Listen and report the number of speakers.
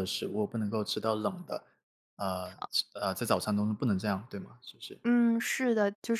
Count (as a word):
two